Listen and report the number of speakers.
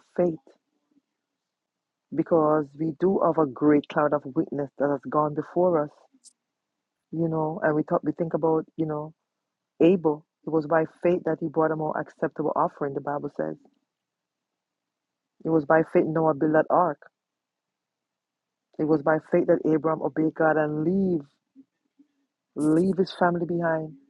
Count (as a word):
one